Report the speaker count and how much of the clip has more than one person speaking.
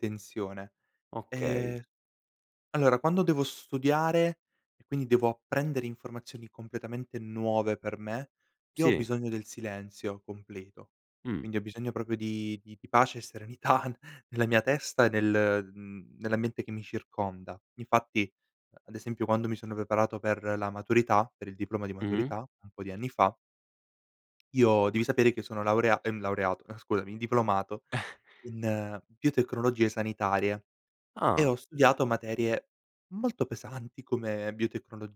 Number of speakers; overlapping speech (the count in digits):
2, about 3%